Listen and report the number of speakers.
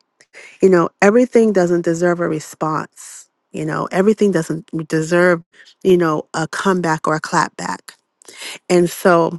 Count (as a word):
one